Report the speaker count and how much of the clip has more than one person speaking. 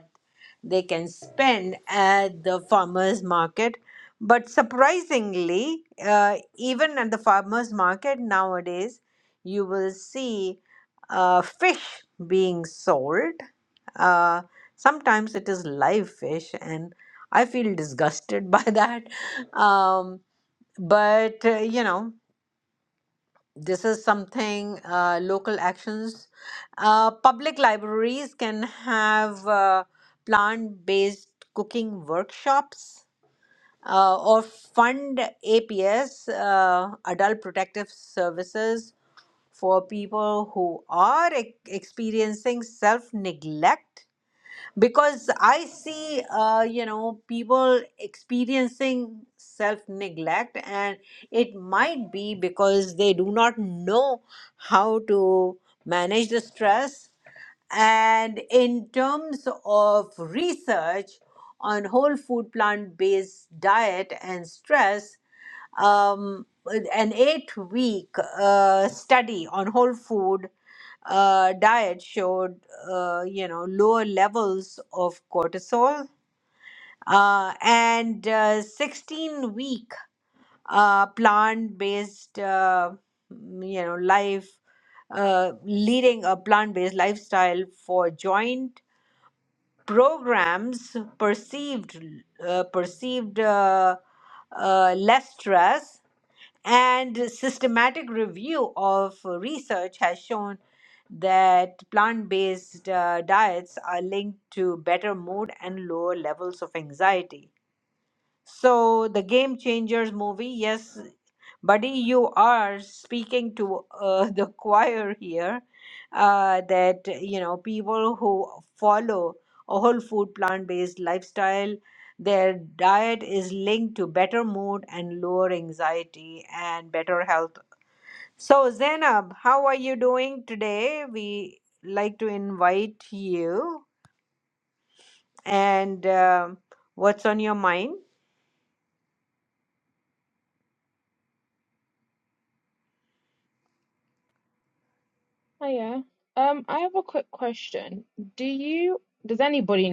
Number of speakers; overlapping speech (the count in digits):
2, no overlap